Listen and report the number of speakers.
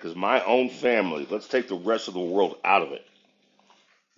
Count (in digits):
1